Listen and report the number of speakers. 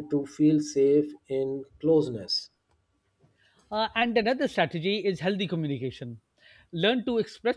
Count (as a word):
two